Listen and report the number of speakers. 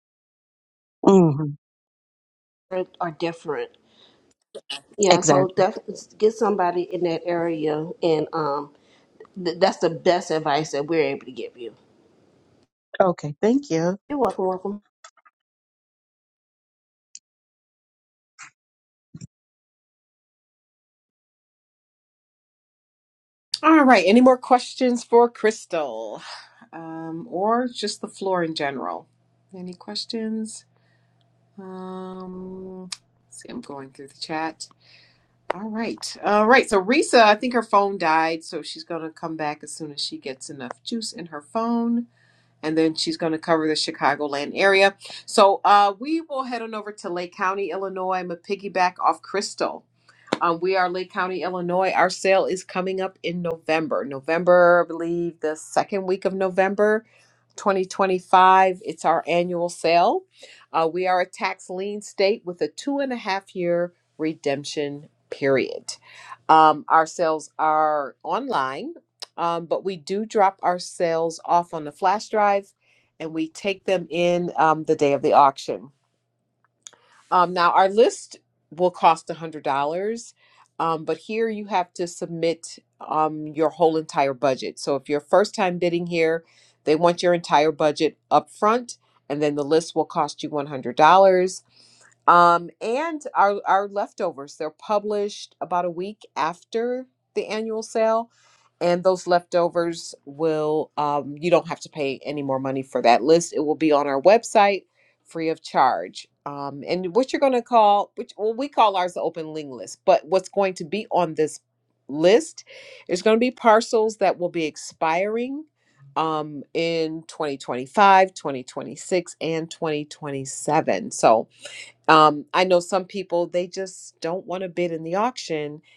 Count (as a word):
three